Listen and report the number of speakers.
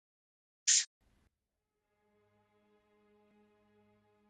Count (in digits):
0